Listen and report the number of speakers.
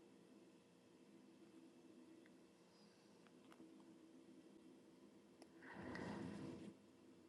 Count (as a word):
zero